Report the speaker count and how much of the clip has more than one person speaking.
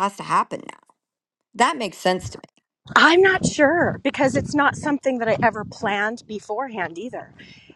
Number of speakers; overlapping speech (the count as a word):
two, no overlap